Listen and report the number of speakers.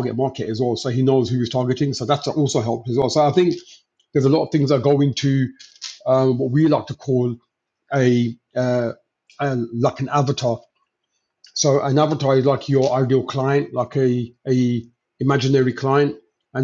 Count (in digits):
1